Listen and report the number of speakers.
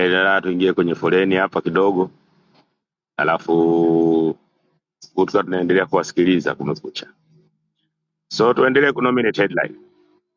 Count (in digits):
1